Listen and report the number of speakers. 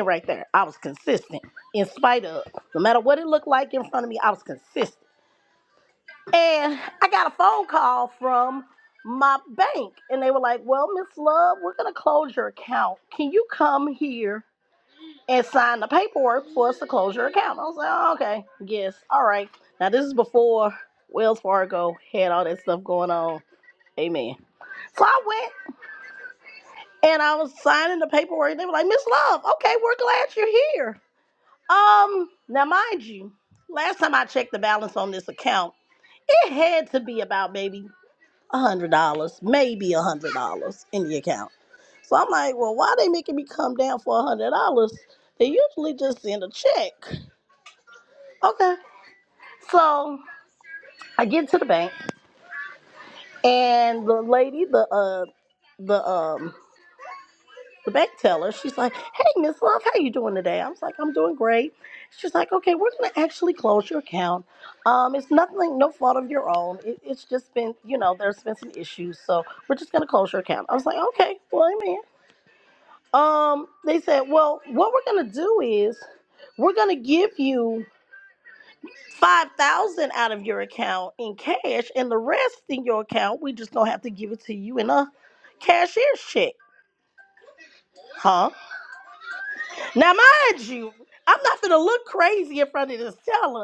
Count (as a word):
one